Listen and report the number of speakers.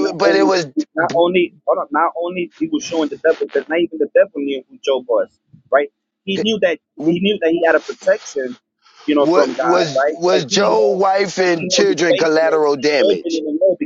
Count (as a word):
two